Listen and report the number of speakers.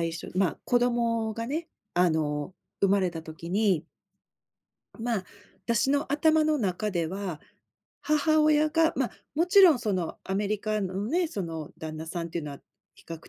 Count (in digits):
1